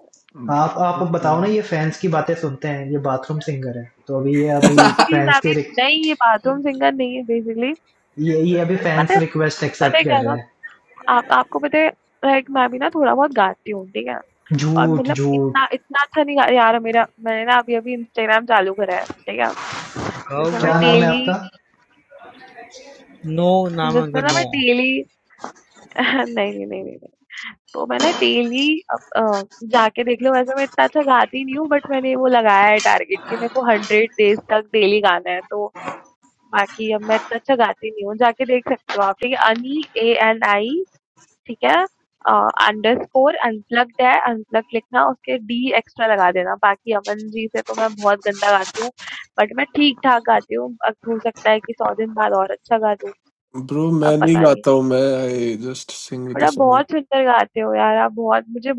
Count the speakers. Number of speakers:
four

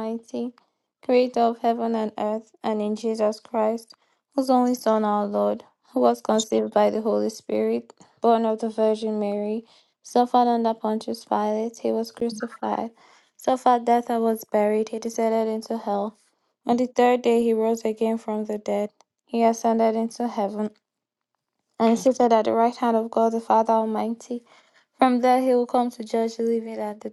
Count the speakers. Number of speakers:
one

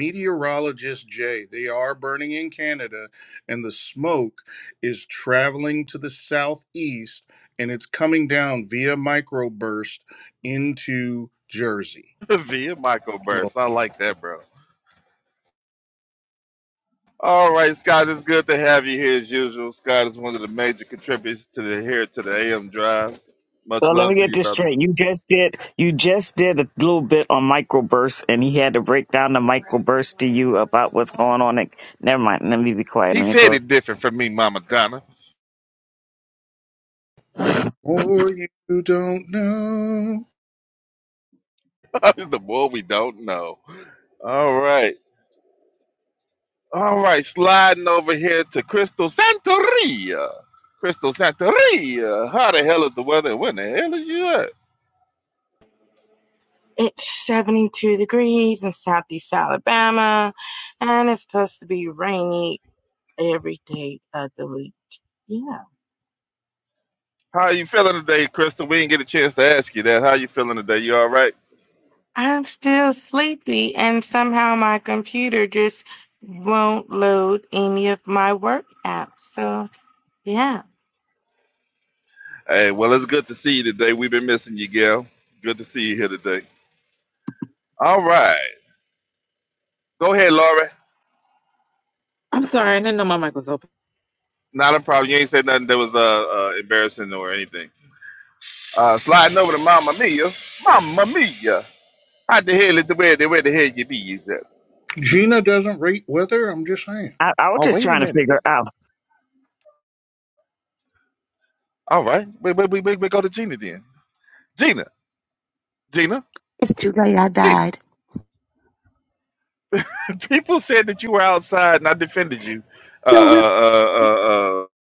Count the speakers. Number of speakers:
six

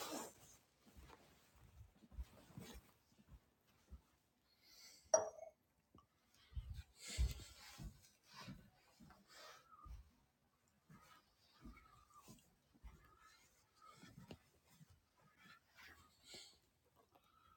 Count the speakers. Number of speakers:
zero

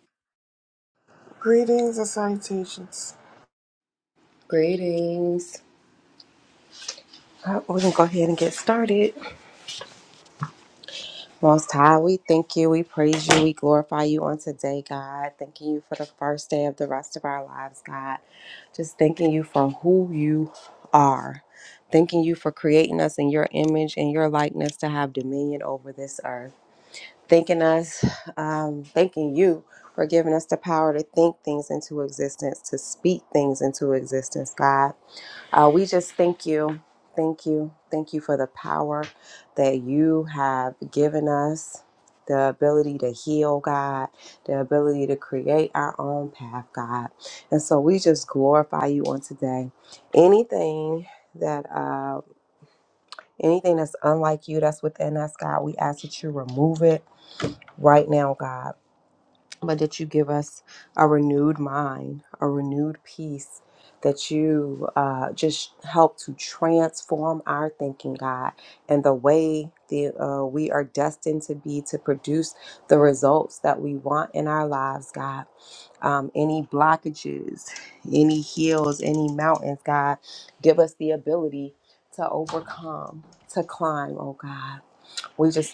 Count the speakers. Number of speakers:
two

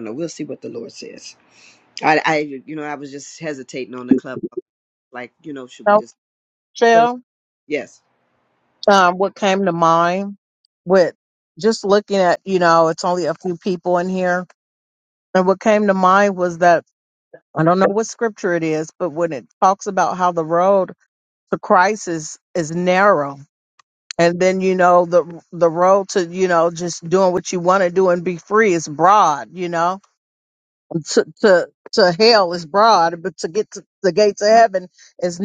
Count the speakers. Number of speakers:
two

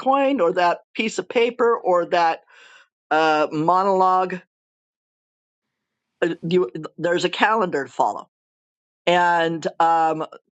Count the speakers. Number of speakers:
one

